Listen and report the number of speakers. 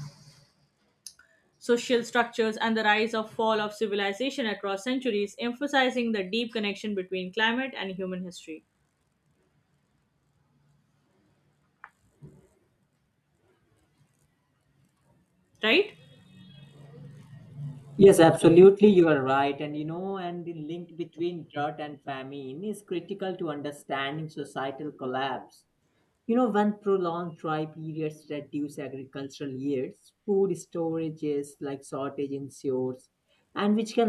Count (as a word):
two